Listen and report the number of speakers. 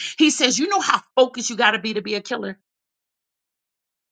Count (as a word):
one